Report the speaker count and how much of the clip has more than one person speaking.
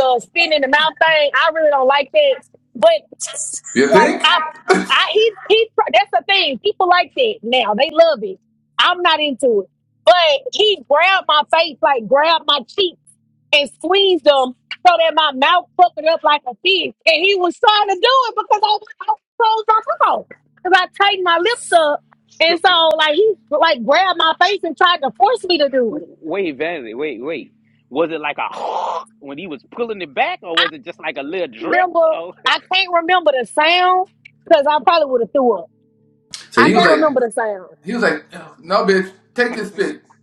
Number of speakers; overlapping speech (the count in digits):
3, about 5%